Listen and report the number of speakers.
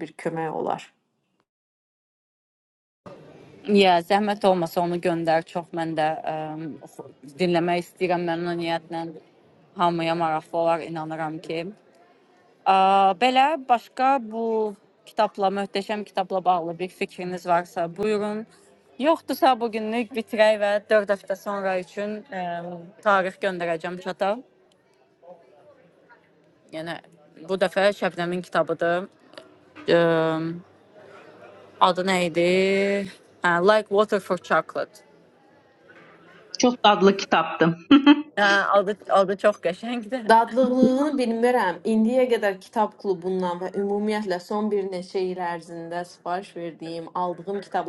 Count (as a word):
three